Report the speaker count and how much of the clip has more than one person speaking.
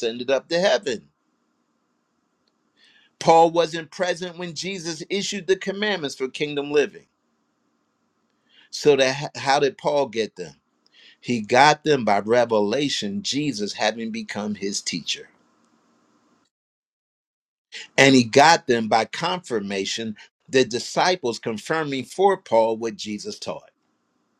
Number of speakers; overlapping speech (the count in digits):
1, no overlap